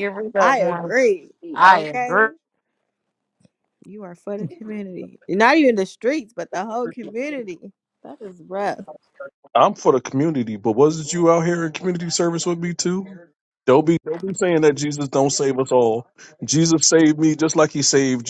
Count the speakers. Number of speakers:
3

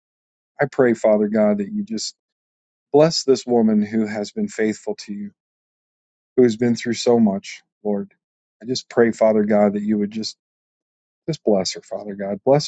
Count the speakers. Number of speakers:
1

